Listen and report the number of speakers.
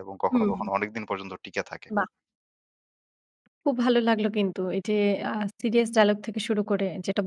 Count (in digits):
2